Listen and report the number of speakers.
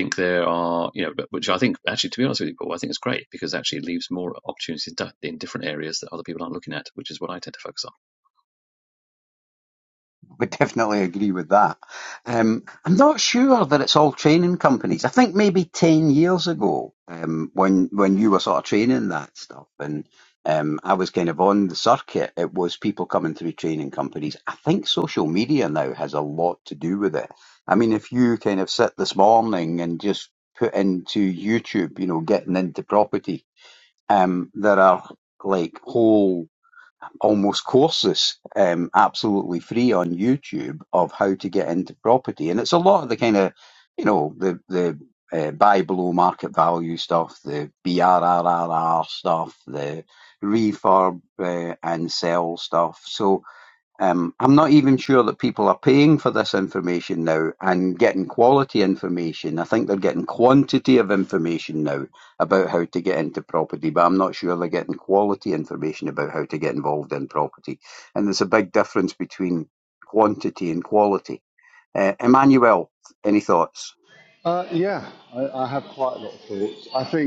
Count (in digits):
3